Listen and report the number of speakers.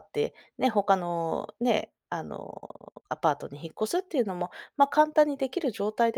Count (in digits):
1